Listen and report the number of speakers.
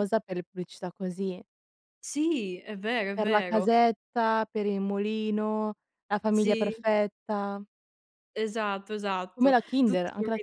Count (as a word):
two